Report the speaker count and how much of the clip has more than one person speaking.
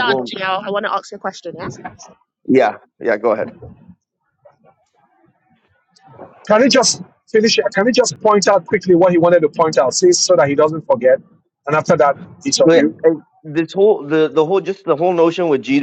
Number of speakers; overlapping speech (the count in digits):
3, about 4%